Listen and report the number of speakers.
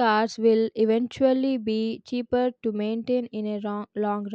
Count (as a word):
one